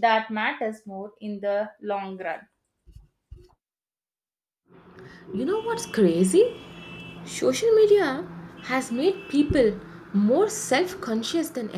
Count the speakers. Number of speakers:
2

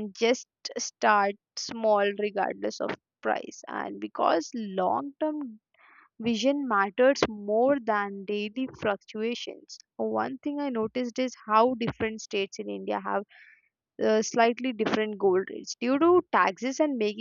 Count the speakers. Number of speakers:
1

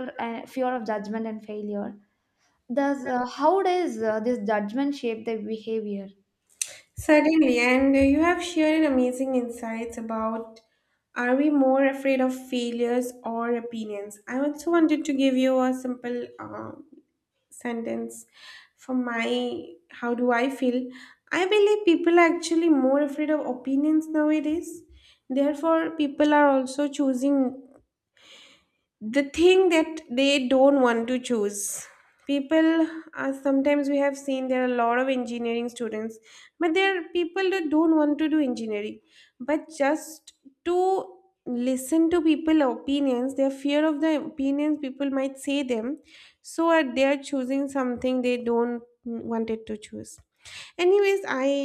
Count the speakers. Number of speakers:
2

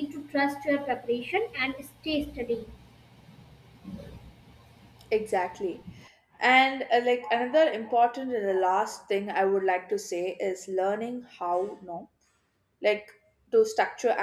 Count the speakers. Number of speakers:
2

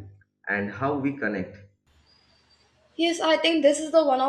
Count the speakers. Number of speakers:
2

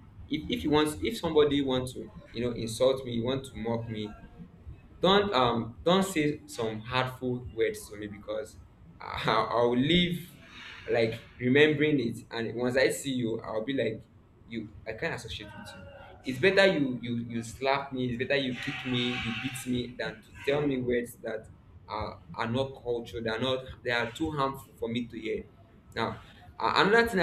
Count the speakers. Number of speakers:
1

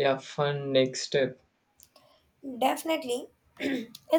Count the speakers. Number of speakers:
2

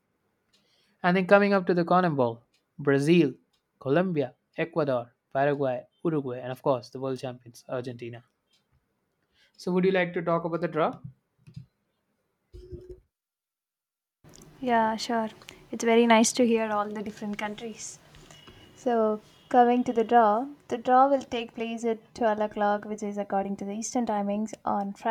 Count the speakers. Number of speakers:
2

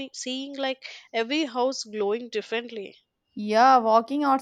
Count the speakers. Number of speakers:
2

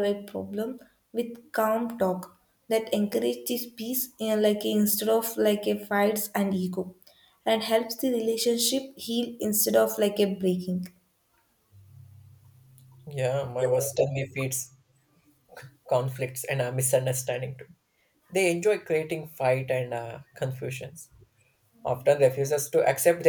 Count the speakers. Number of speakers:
2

